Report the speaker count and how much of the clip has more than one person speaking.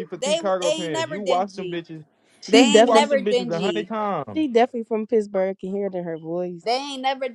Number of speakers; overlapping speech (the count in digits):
3, about 42%